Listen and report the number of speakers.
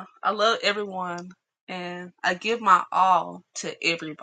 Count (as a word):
one